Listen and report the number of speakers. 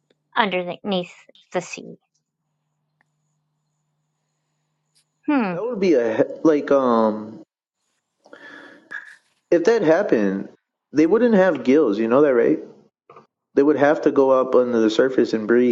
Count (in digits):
2